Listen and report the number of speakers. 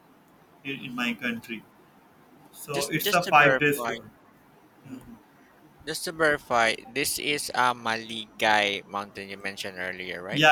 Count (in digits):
2